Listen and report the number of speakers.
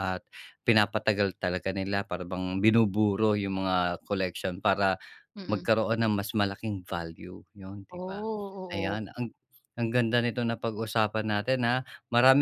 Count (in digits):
2